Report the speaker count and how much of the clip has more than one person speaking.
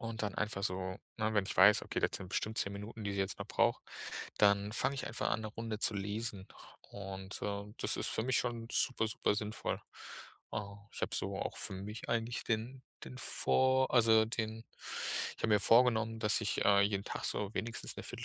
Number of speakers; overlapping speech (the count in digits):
1, no overlap